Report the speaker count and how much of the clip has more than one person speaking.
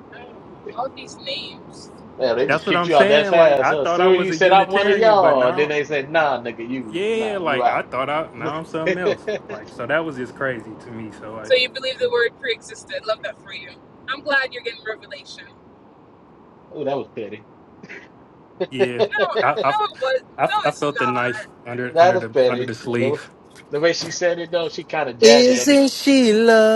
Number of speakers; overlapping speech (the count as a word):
four, about 32%